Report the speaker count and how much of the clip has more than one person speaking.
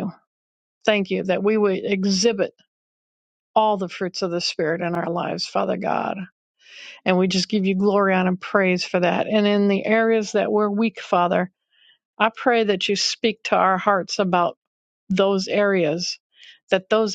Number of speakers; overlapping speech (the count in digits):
1, no overlap